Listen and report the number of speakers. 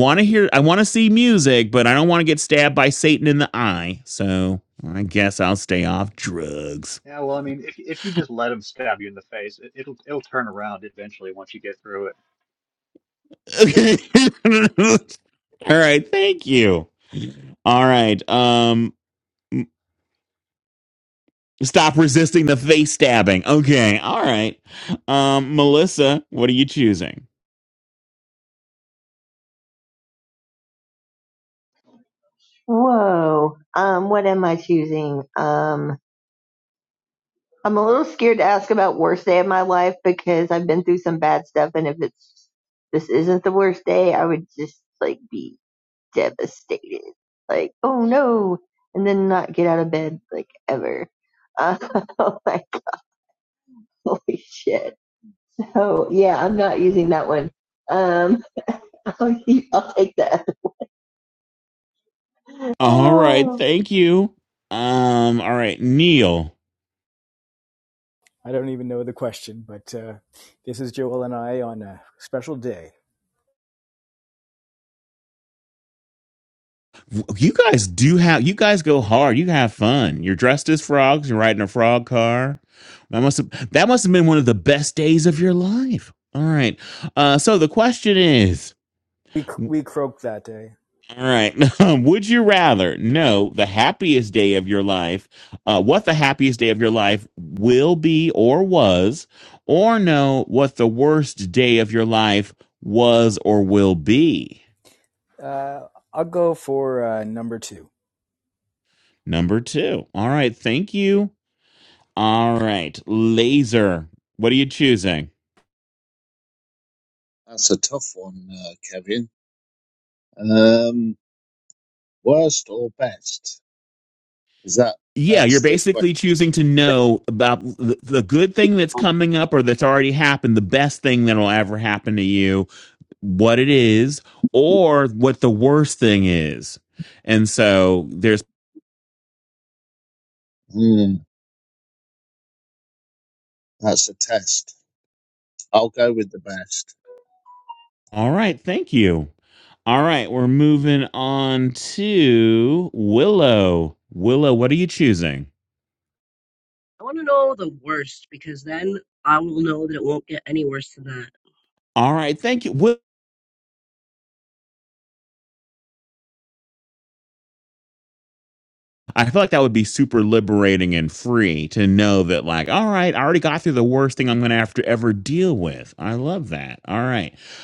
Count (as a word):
six